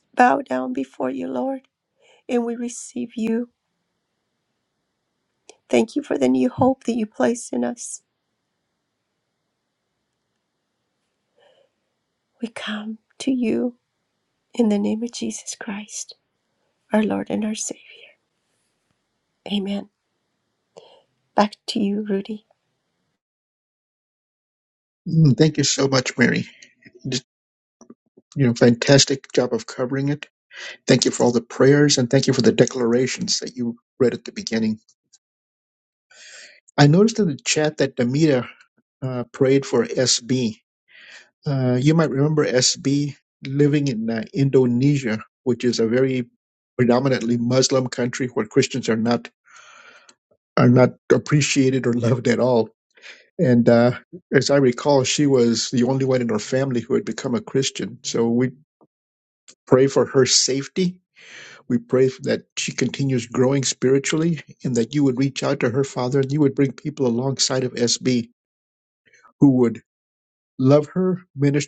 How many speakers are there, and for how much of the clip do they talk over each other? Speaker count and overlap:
2, no overlap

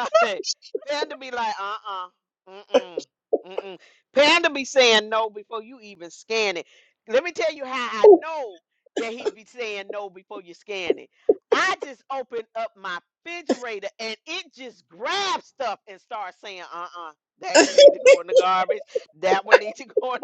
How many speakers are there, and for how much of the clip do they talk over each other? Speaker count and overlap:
1, no overlap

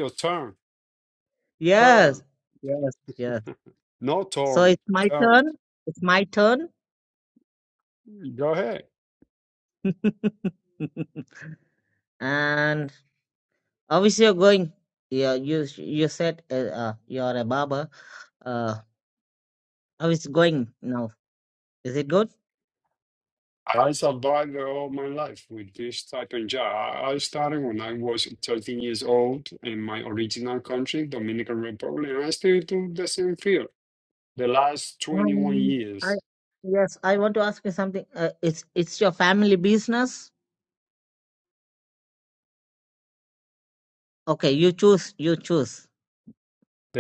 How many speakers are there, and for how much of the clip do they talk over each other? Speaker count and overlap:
2, about 4%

